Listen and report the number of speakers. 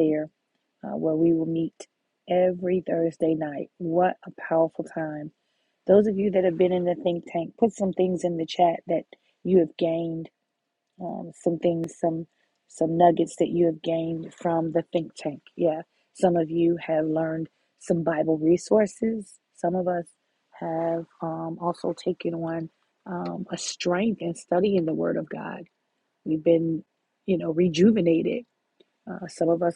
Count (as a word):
one